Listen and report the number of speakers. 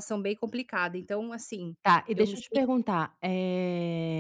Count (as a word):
two